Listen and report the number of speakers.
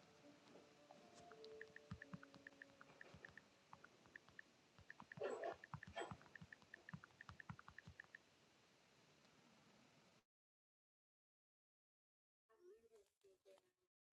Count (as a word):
zero